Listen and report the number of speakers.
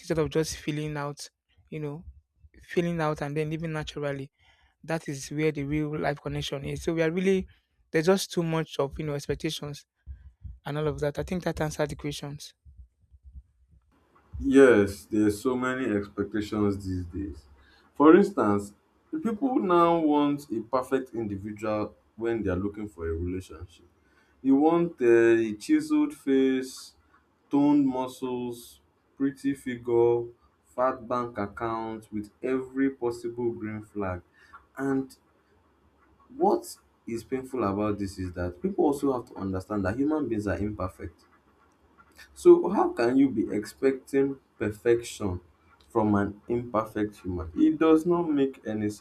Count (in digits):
2